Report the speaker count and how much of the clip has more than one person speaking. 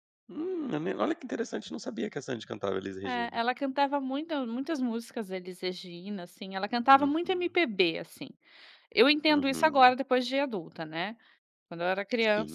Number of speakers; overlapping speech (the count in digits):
2, about 13%